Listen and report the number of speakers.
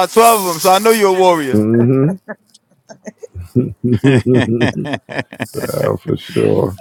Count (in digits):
2